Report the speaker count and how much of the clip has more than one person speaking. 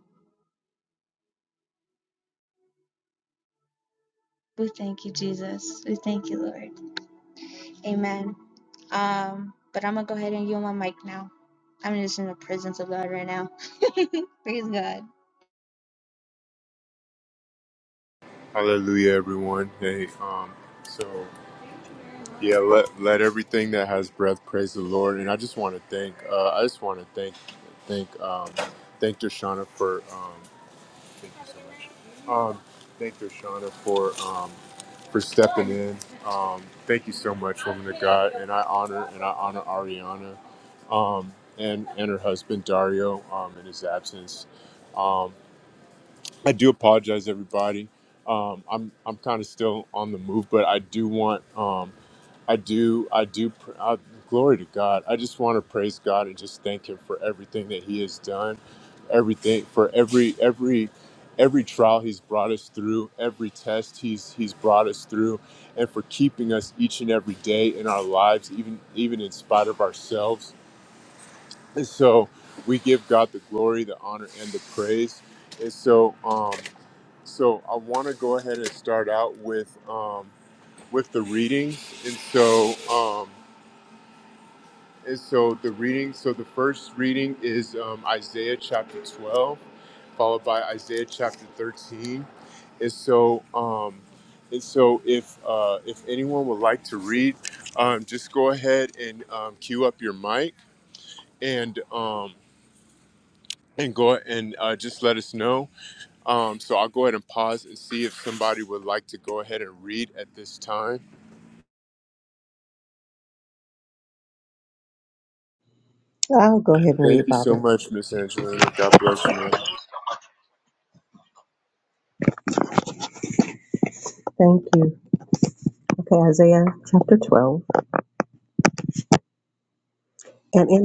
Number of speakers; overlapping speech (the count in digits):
3, under 1%